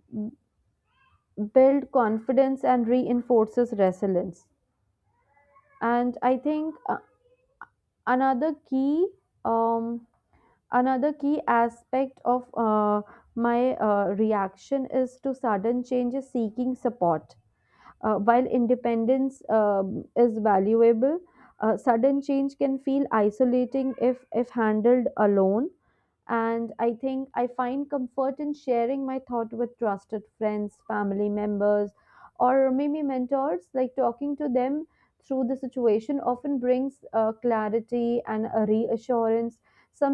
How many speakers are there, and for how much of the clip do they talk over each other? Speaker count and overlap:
one, no overlap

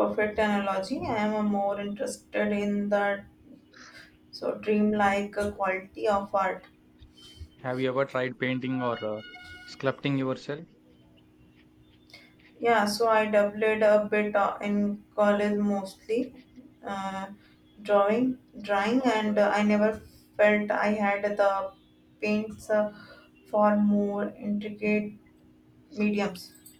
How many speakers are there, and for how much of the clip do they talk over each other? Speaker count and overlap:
two, no overlap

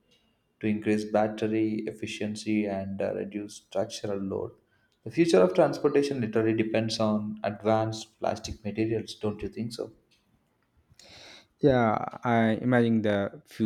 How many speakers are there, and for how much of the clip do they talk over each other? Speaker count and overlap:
two, no overlap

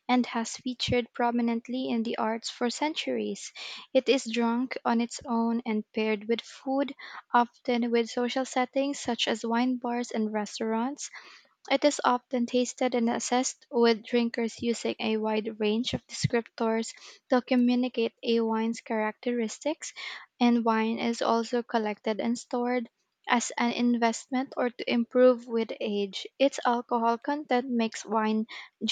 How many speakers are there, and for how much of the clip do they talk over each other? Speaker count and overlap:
one, no overlap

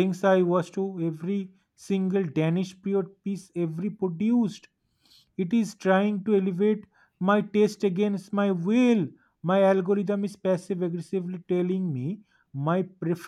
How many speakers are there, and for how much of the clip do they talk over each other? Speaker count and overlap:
one, no overlap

